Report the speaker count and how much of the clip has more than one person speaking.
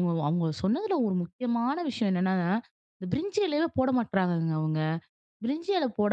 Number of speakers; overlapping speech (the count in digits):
1, no overlap